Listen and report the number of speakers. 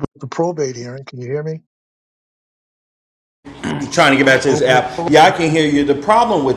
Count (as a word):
two